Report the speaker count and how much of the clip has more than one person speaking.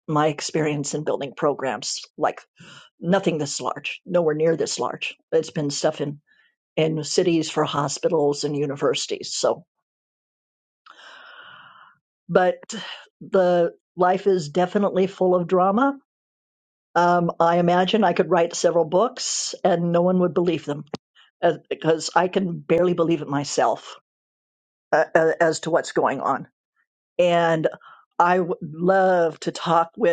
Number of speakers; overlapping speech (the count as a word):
one, no overlap